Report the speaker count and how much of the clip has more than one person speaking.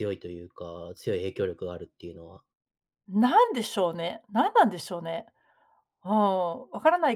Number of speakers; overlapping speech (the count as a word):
two, no overlap